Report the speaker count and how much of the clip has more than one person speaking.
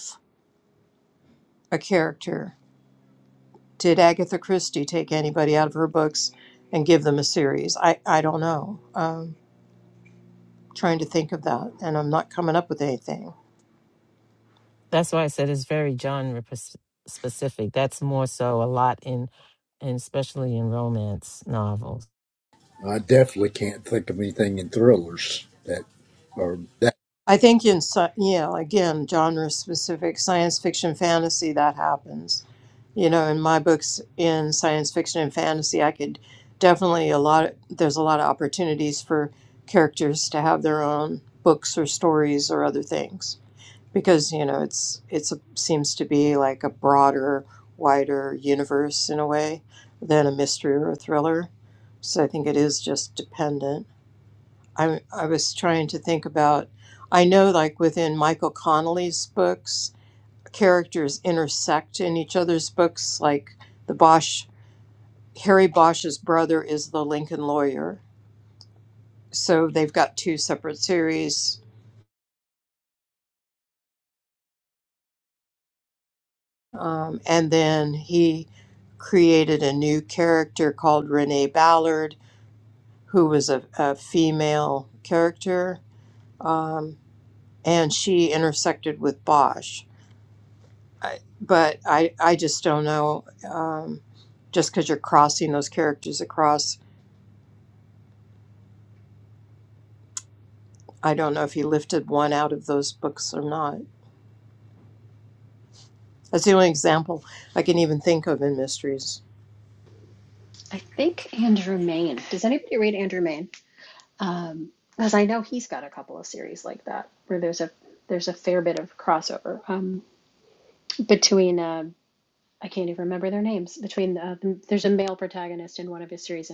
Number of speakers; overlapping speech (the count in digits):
4, no overlap